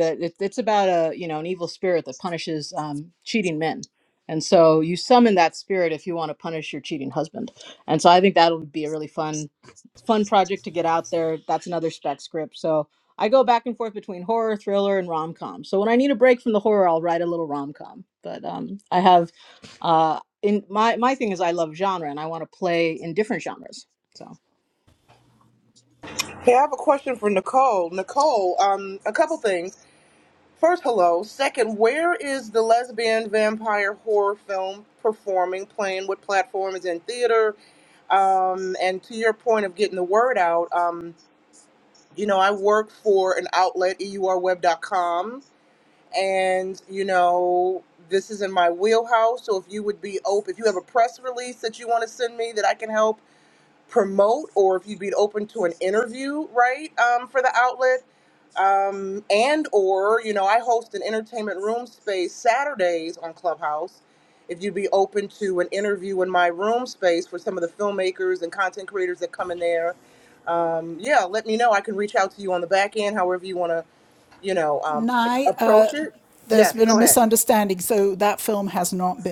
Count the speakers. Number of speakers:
3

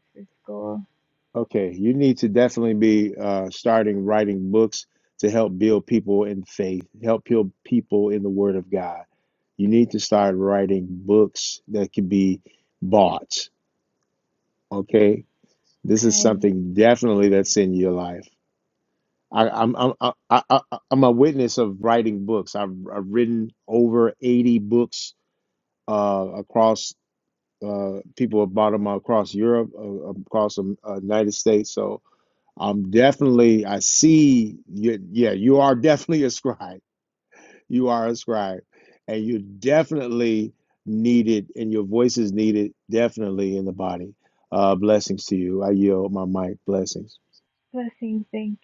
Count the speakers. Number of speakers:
2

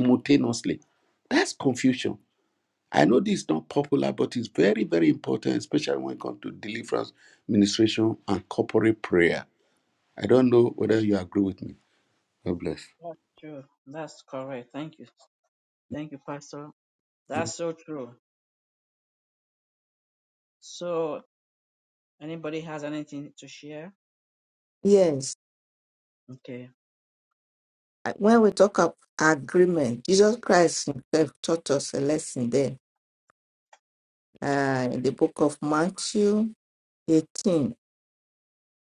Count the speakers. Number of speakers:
3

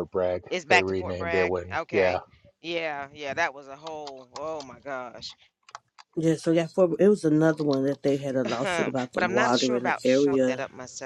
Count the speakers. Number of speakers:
3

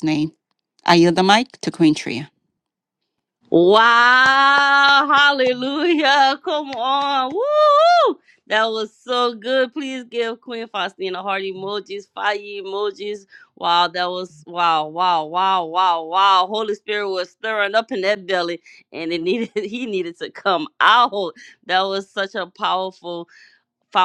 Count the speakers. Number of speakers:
2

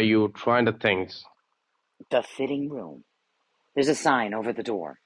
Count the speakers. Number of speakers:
2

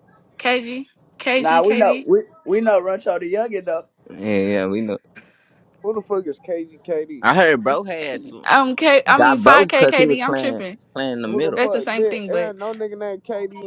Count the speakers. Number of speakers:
4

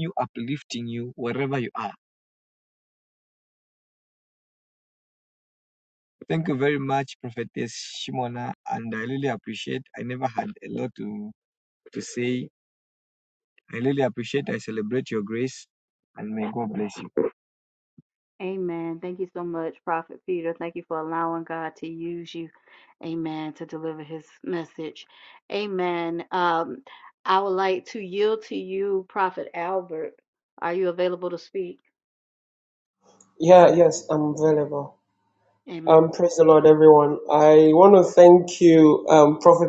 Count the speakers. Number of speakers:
3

